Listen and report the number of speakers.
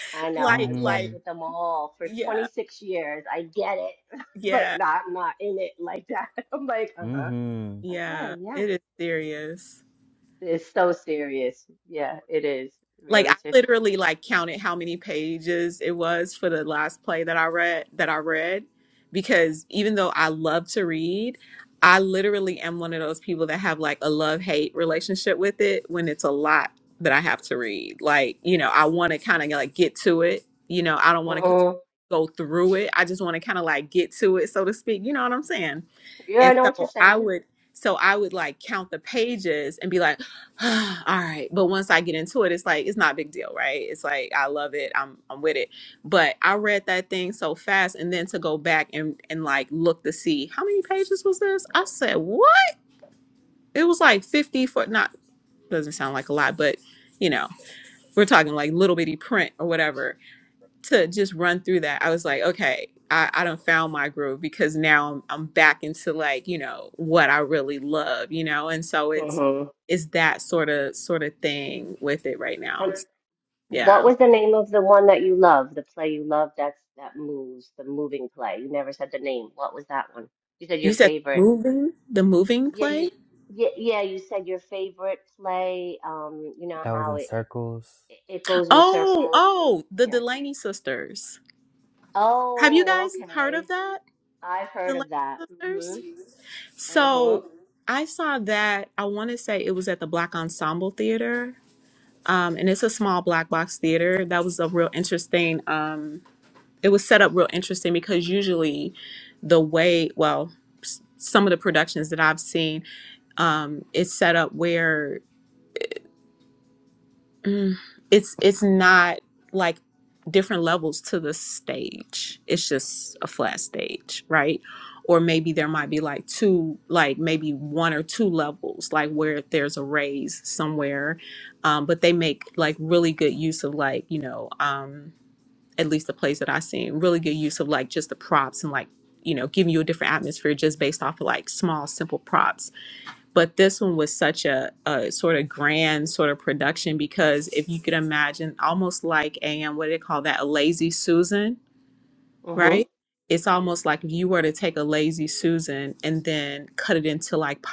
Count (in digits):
3